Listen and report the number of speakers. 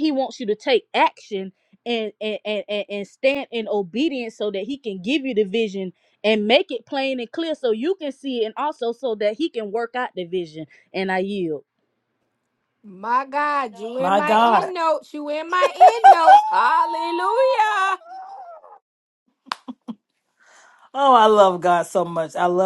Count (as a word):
three